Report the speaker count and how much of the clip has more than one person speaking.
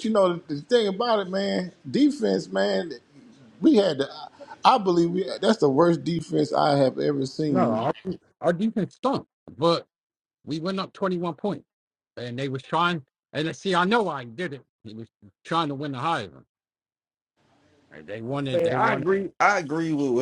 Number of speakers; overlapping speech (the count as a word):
three, about 5%